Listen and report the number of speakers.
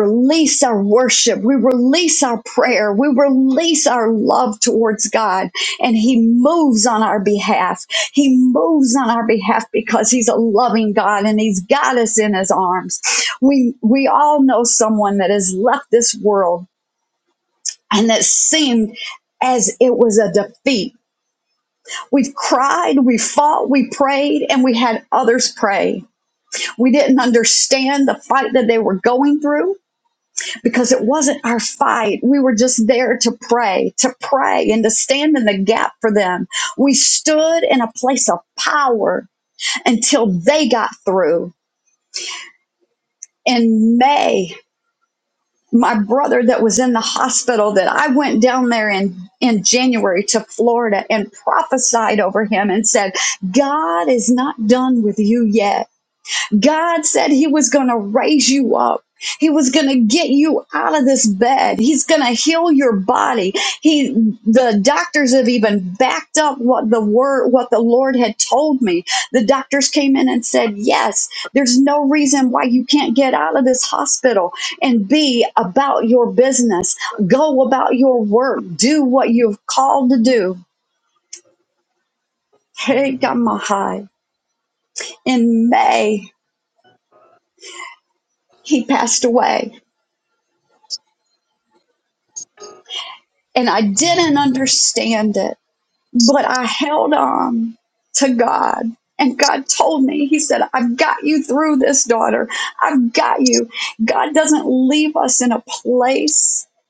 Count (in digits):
1